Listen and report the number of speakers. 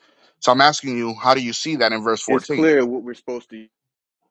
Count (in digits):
2